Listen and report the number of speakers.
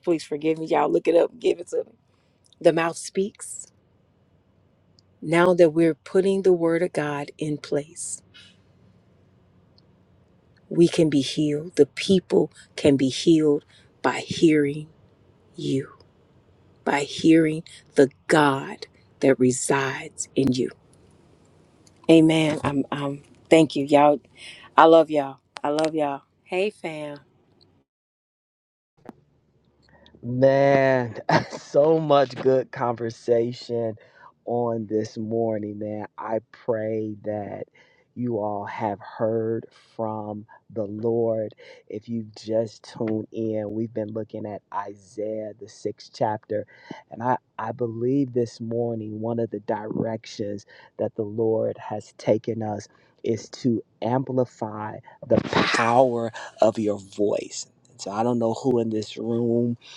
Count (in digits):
2